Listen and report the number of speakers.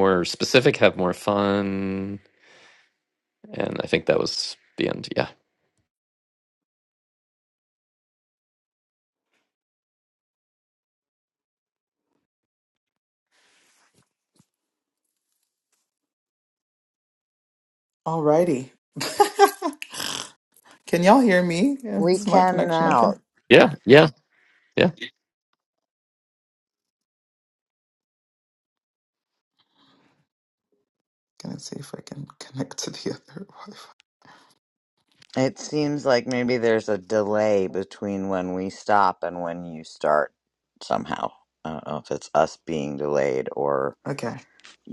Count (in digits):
3